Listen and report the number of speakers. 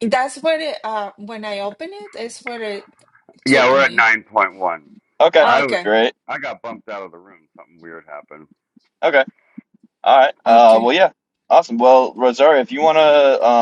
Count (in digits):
3